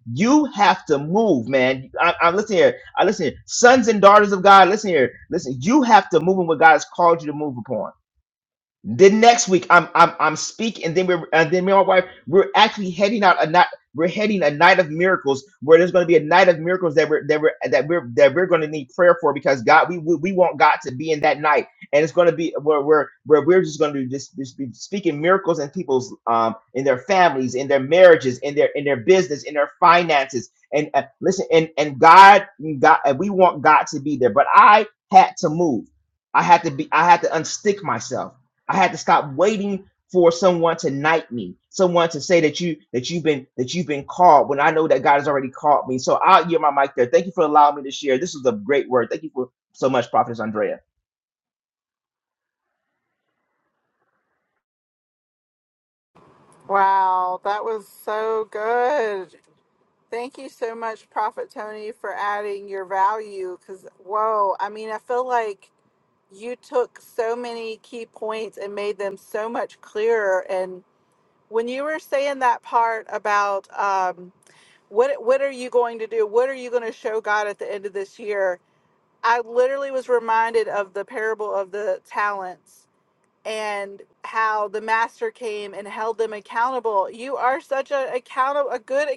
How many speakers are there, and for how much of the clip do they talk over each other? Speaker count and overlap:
2, no overlap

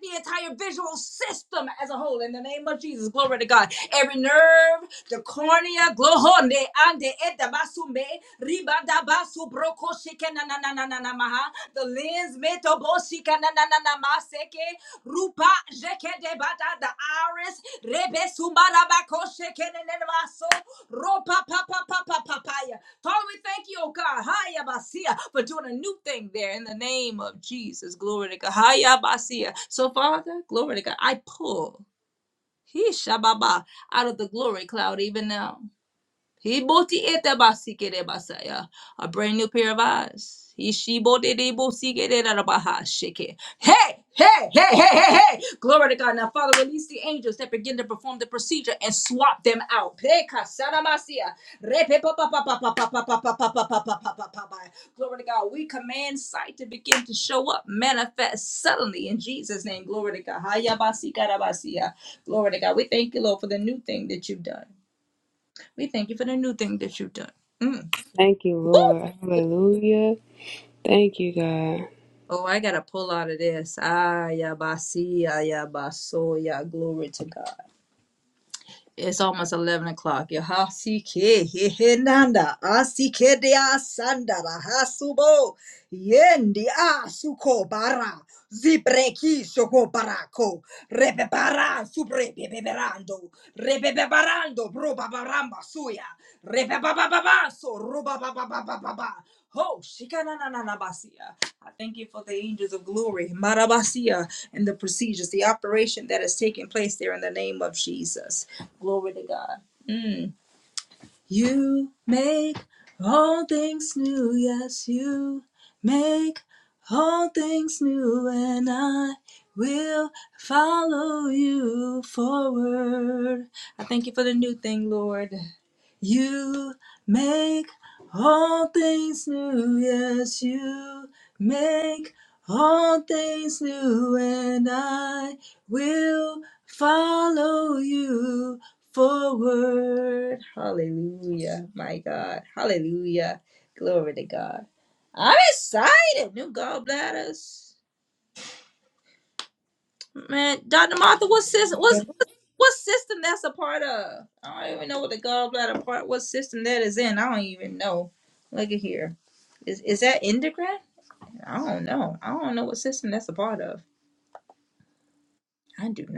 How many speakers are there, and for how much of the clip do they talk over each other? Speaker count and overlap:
2, no overlap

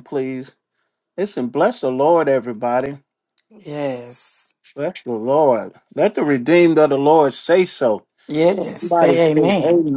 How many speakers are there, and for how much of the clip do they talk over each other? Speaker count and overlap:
2, about 10%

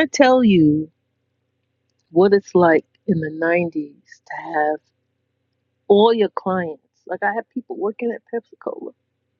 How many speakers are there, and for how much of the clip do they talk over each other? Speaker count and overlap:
1, no overlap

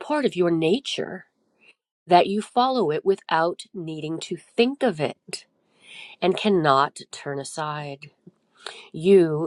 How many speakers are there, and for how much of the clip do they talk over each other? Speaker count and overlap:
1, no overlap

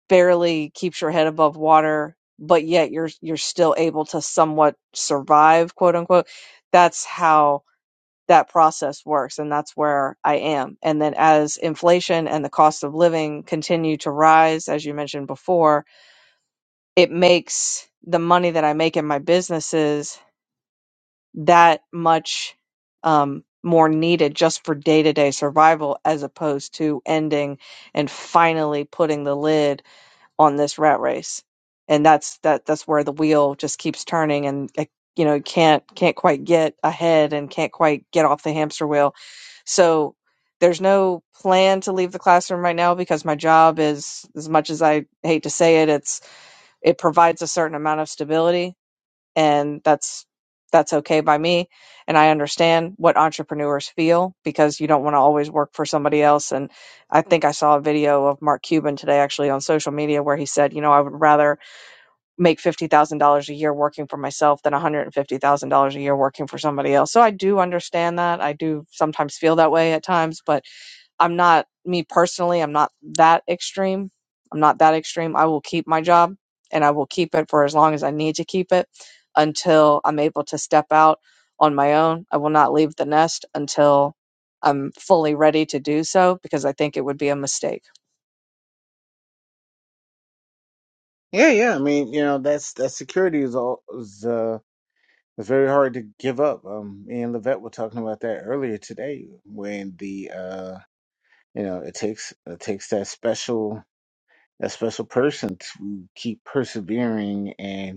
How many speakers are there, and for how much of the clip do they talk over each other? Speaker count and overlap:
2, no overlap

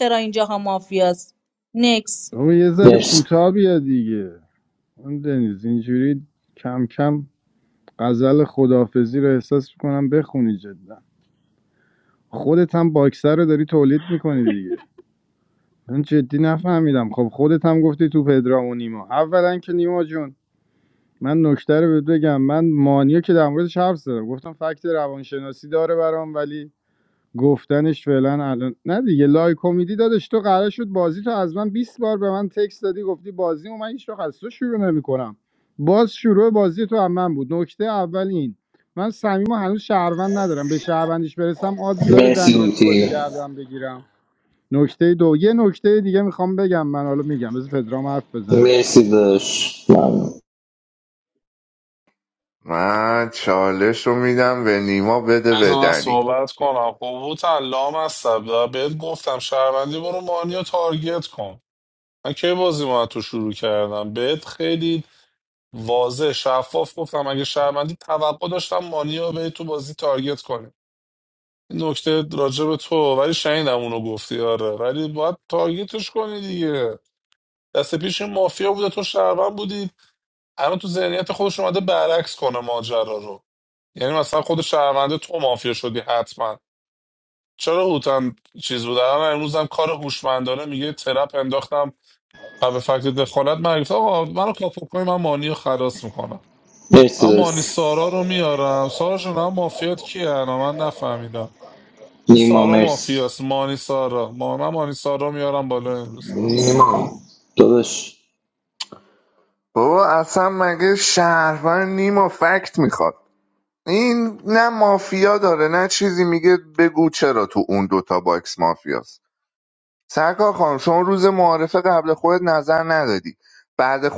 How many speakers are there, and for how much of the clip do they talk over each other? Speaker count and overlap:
5, about 3%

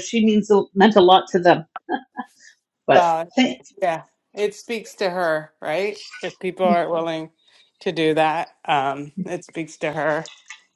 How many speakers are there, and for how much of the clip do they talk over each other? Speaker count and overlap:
2, about 4%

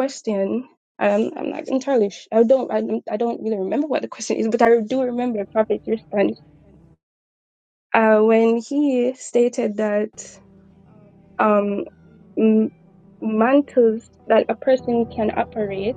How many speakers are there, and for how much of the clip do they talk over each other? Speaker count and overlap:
1, no overlap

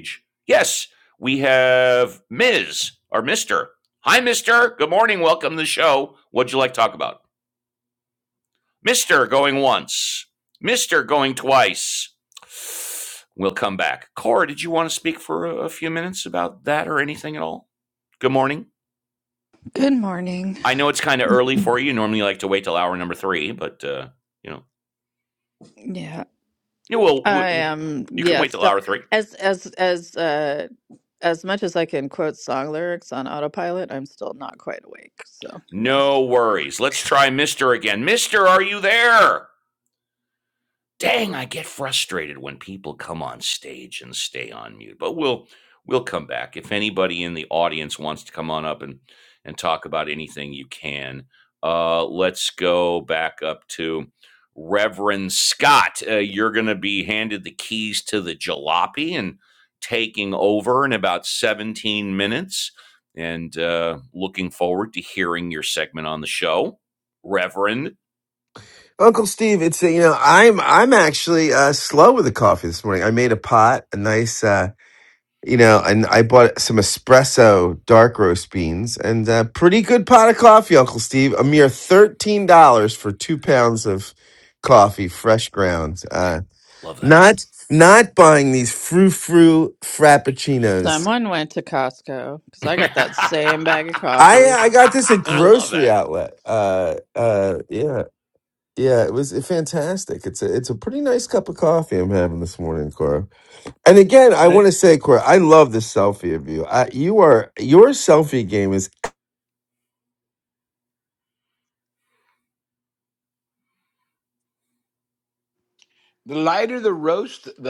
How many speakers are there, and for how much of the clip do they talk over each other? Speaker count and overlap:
4, about 3%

